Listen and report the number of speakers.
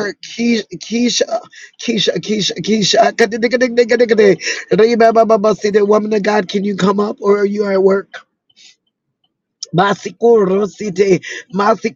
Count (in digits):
1